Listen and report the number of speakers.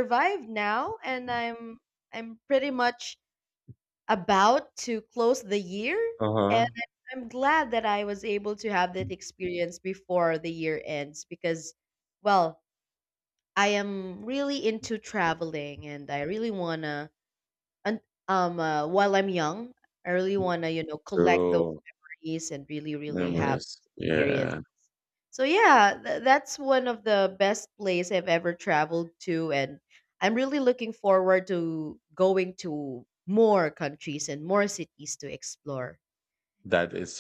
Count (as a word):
two